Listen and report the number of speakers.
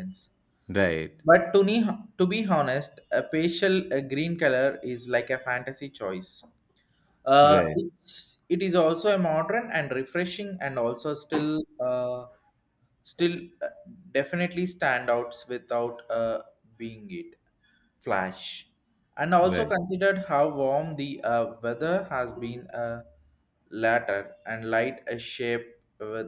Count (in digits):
2